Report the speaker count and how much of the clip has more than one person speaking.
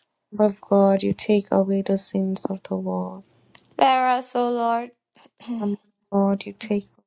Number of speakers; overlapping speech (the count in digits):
2, no overlap